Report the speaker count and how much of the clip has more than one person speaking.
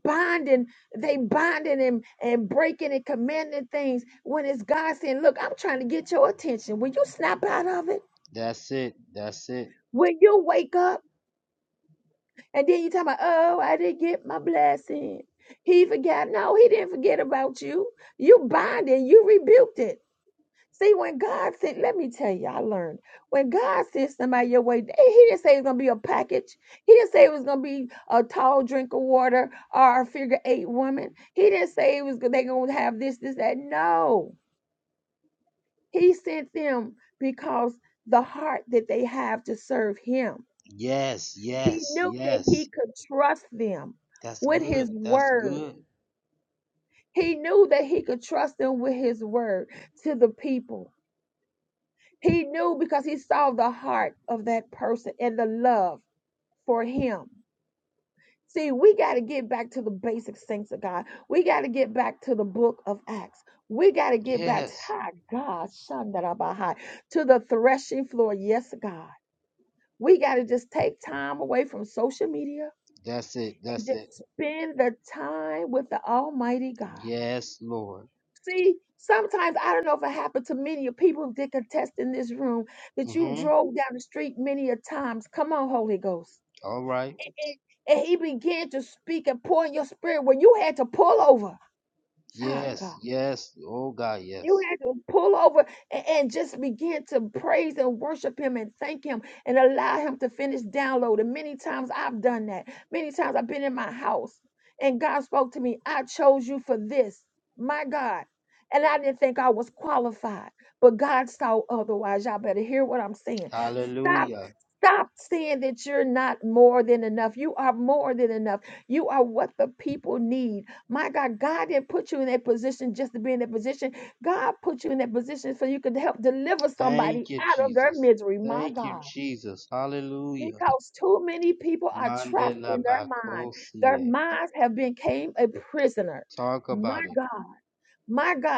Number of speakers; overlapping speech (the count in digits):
2, about 6%